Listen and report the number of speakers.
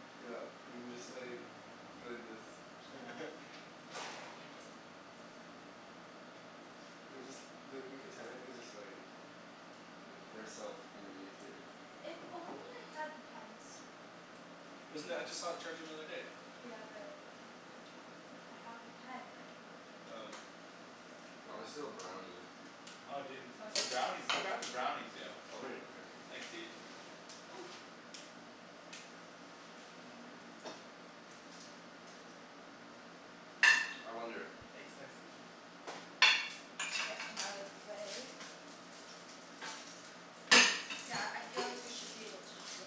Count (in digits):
4